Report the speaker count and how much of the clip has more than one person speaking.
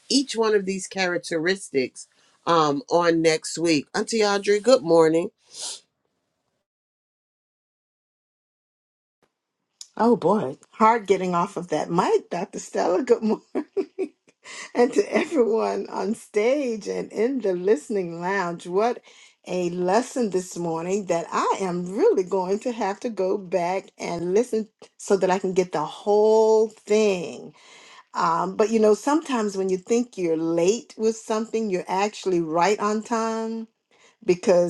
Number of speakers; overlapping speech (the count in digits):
2, no overlap